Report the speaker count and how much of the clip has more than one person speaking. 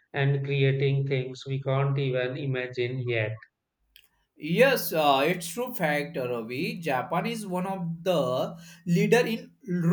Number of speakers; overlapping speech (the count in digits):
2, no overlap